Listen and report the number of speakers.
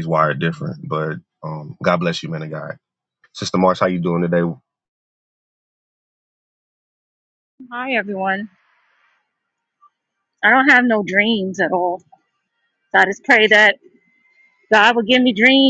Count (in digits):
2